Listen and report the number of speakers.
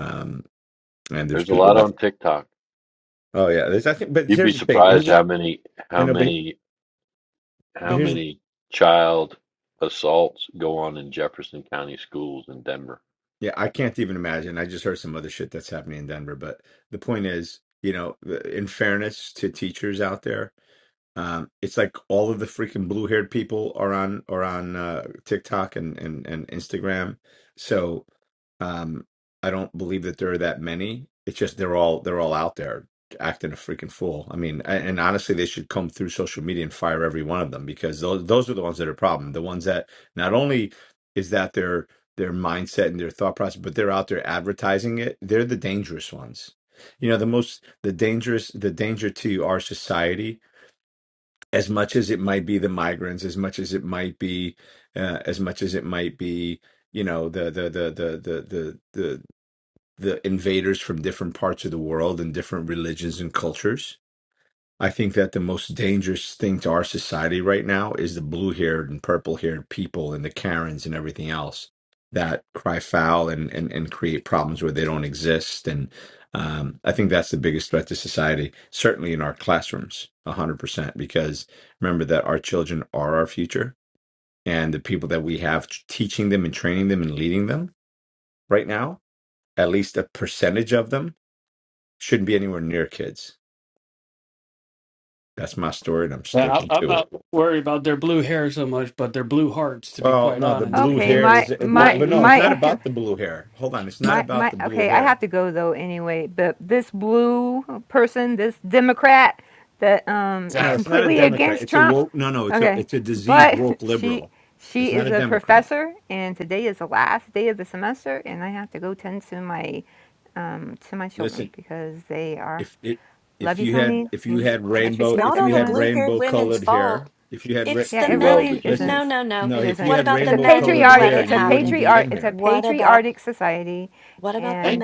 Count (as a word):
five